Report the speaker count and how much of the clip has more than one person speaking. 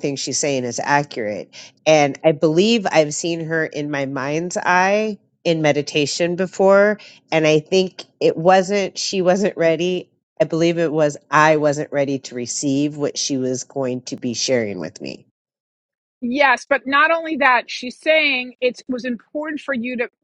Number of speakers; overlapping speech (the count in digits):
2, no overlap